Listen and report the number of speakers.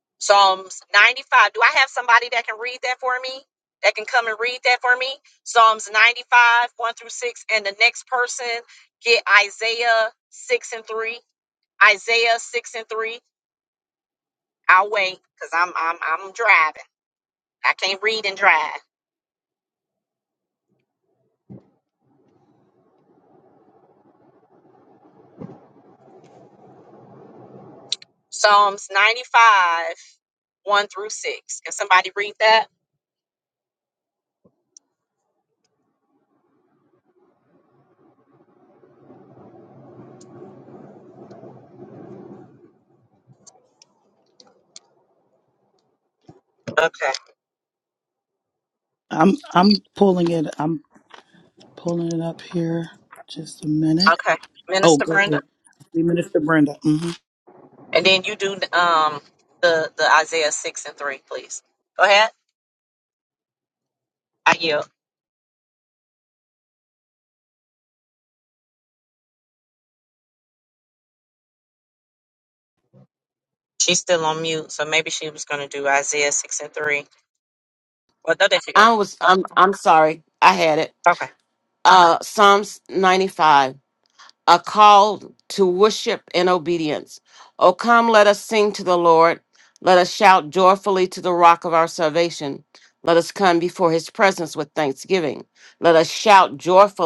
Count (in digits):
3